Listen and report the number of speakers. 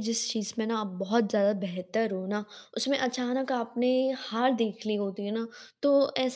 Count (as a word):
one